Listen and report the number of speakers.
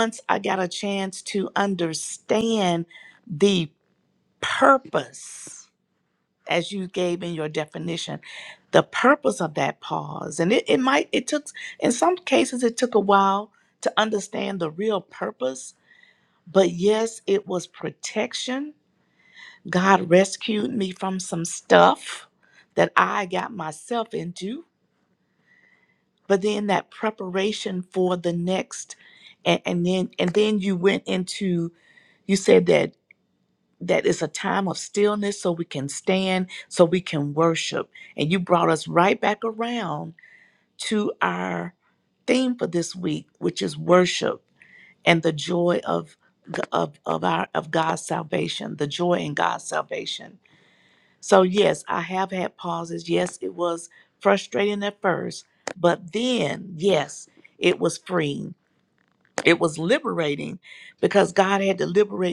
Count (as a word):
one